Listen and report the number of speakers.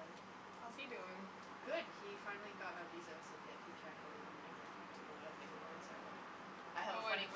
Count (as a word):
two